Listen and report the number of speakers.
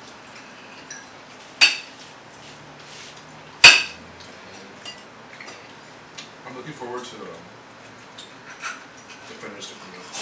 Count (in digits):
1